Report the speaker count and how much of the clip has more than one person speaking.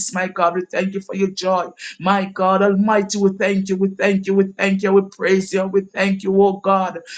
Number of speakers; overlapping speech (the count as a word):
one, no overlap